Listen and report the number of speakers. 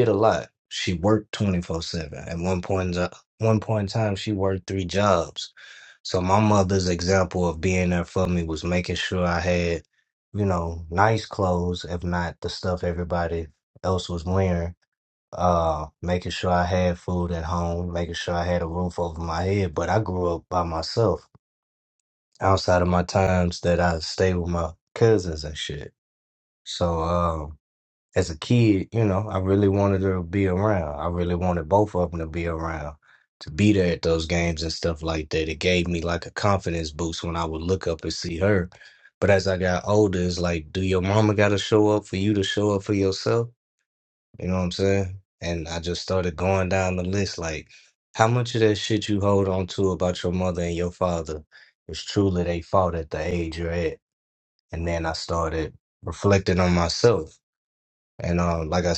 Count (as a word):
one